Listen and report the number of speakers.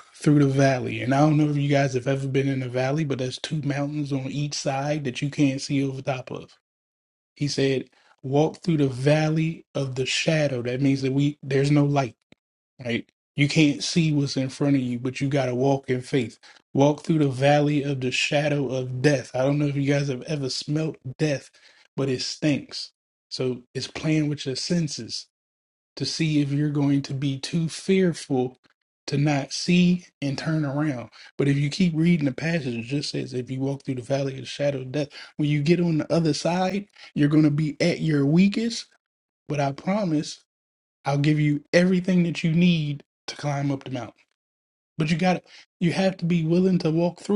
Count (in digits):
1